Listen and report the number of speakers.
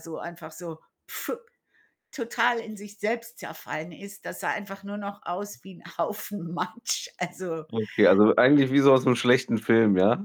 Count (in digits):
2